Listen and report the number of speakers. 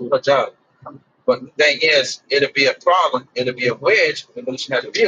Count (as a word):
one